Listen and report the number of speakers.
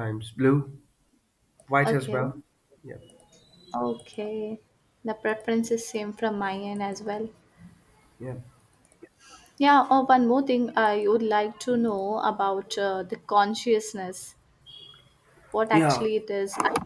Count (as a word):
two